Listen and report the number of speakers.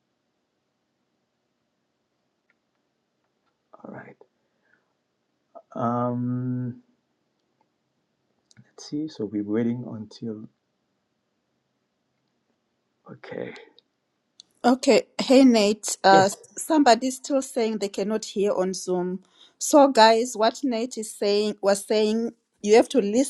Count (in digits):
2